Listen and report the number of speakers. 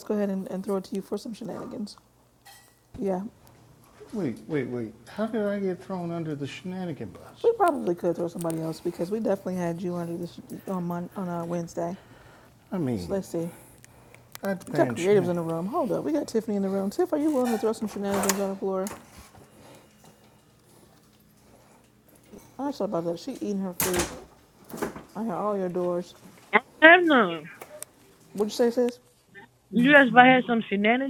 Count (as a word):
three